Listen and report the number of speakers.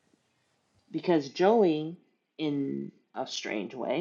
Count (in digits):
1